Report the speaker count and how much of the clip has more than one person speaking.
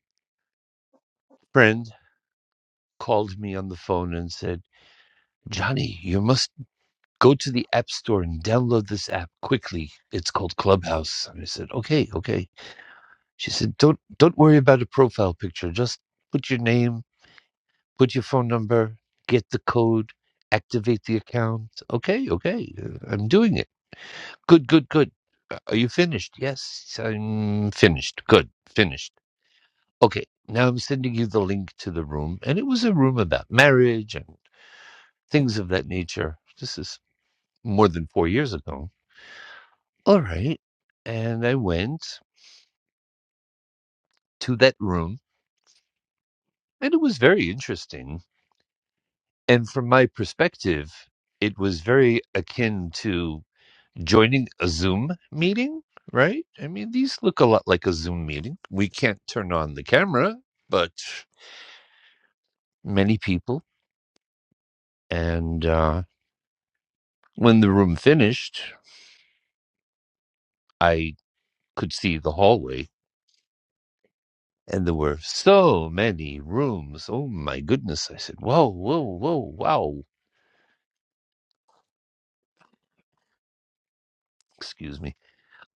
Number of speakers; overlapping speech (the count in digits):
1, no overlap